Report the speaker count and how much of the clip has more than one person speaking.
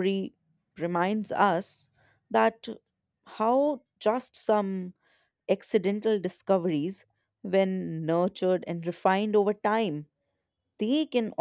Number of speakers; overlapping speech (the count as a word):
one, no overlap